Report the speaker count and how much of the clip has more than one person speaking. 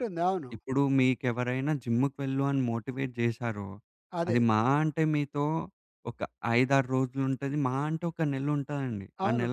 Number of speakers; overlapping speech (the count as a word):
two, about 5%